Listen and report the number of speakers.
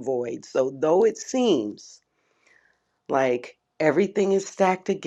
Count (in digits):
1